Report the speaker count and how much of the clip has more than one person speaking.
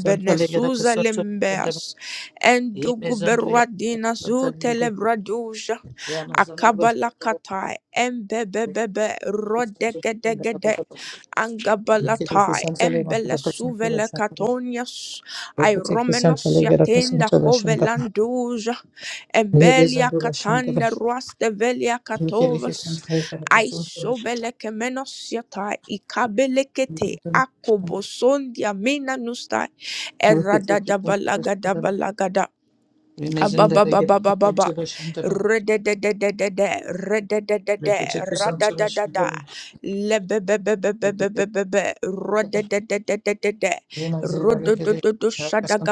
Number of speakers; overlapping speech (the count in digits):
2, about 39%